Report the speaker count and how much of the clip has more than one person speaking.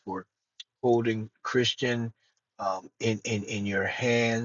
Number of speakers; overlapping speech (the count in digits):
1, no overlap